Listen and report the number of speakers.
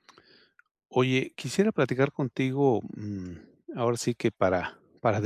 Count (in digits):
1